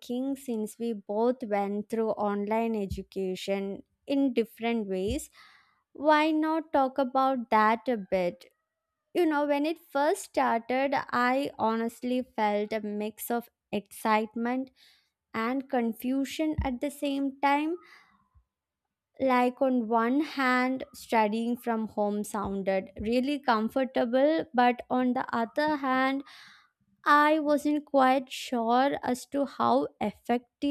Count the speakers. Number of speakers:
1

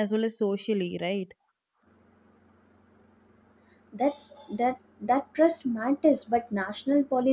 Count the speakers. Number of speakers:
2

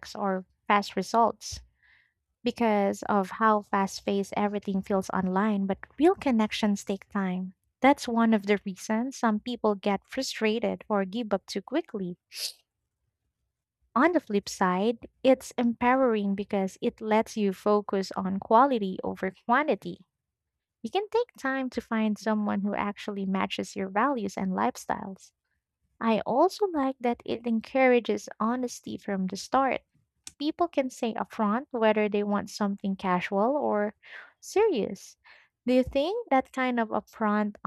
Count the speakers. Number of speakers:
1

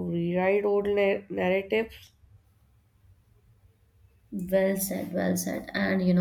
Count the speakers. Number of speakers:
2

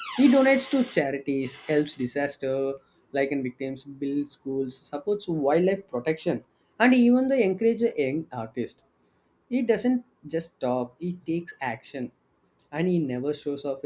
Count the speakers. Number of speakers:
1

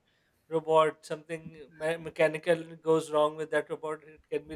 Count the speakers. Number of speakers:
1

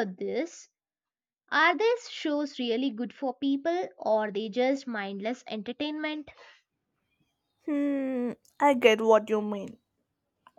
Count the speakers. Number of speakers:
2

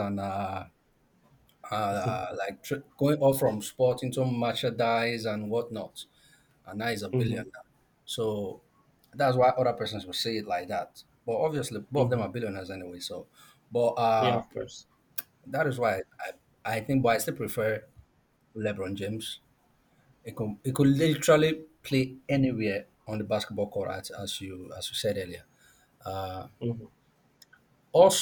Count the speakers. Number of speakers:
2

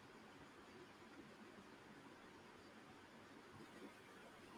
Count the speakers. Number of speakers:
0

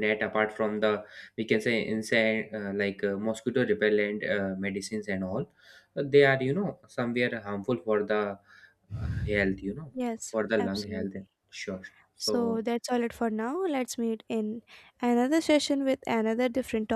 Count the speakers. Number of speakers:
2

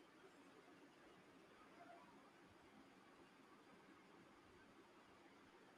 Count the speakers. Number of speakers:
0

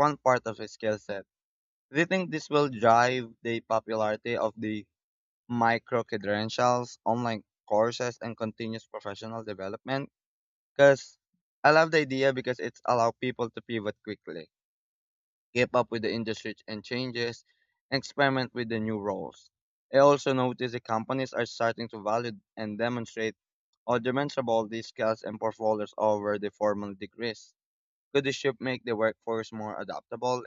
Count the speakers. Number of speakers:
1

